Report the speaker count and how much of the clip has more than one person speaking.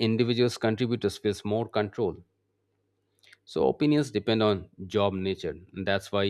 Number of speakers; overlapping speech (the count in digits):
1, no overlap